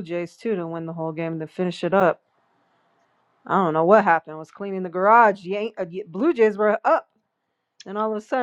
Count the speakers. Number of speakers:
1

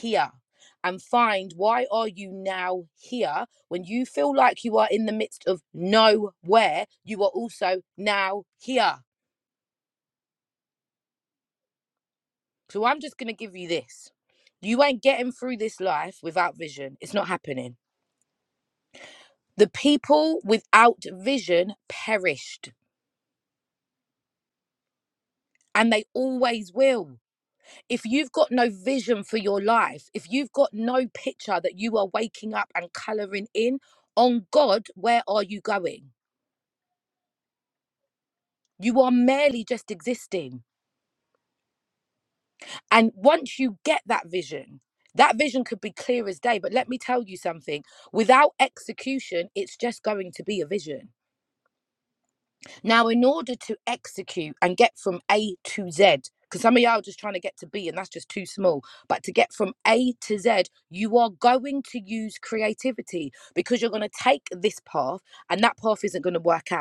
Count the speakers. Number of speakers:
1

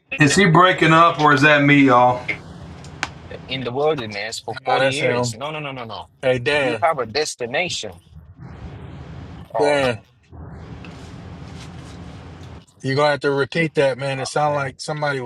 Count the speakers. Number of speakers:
3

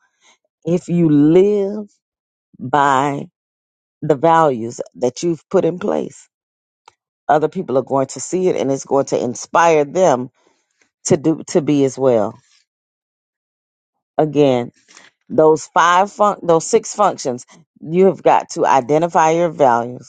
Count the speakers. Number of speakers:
1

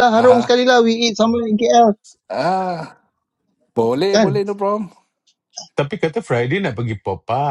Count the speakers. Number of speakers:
3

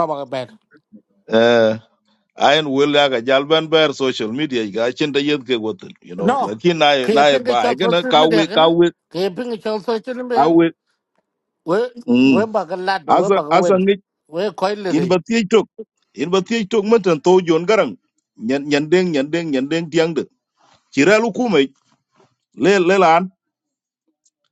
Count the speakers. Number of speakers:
2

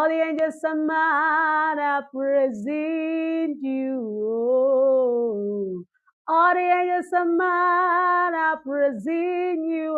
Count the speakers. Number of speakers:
1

